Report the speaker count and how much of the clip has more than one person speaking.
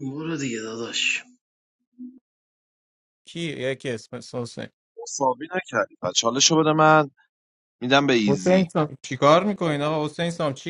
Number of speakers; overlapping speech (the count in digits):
3, about 3%